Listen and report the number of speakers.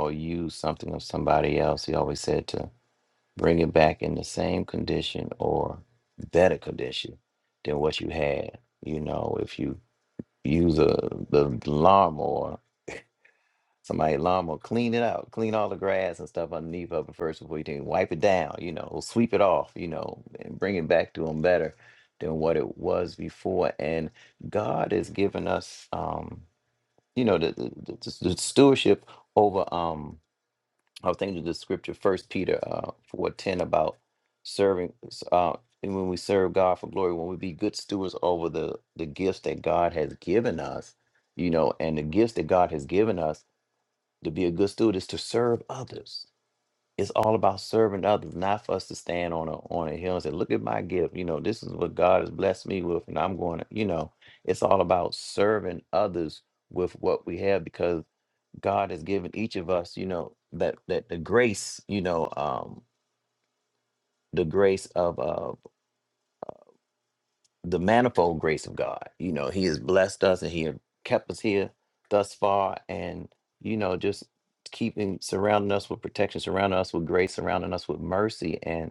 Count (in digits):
1